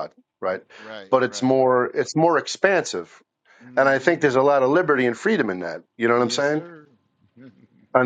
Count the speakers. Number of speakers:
2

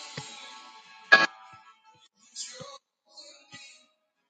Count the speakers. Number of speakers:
0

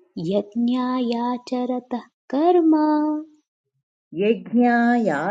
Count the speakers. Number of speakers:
2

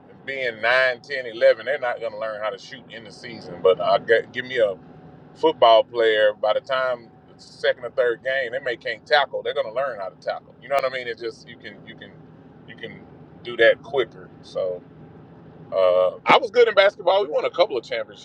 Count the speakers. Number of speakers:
1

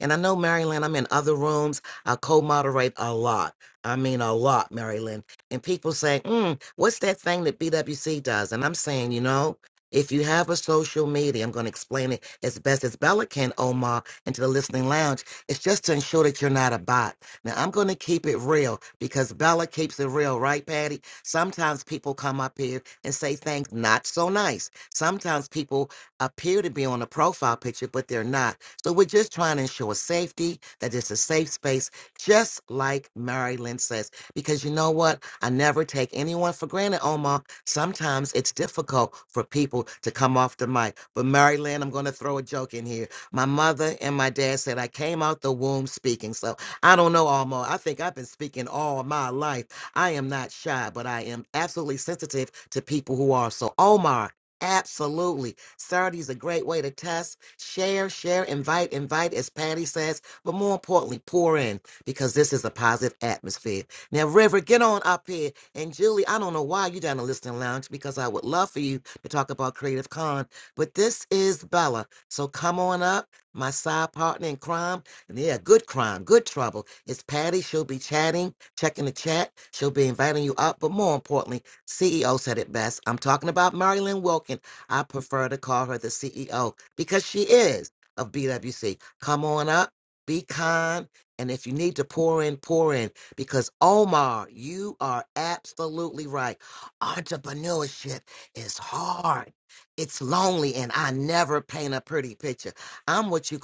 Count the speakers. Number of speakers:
1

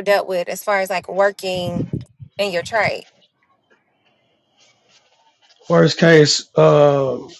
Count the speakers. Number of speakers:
2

